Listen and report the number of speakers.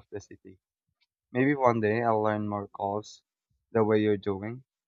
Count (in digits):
1